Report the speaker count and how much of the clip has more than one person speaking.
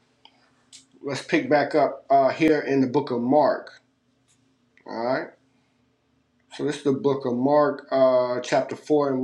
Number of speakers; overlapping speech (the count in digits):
1, no overlap